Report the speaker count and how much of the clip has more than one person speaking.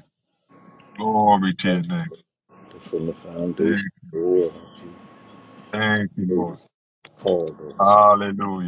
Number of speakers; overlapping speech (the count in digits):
2, about 9%